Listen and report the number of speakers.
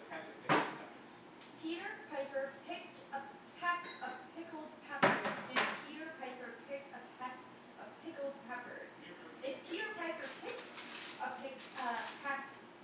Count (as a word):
two